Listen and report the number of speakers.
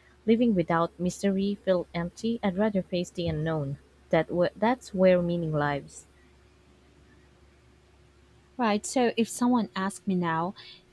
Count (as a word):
two